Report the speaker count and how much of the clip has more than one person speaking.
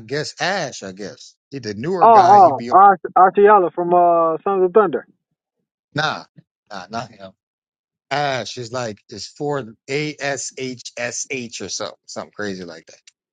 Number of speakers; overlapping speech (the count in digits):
2, about 6%